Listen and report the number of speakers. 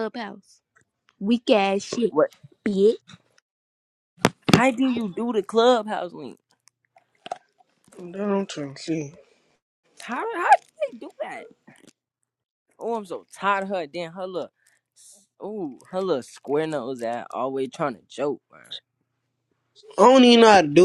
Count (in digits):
3